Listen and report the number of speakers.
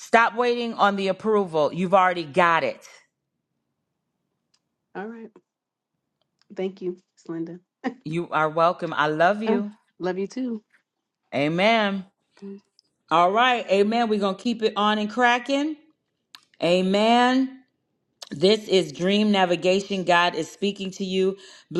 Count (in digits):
2